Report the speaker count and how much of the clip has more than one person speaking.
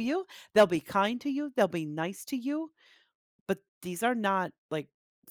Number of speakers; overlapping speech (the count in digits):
1, no overlap